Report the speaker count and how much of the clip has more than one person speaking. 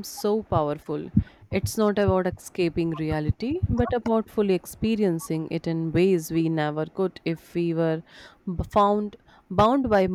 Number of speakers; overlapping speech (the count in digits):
1, no overlap